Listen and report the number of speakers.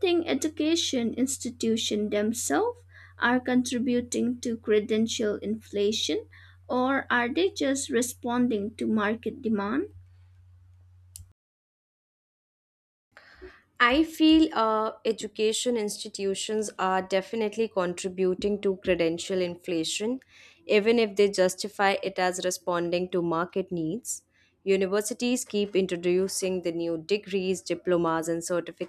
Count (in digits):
2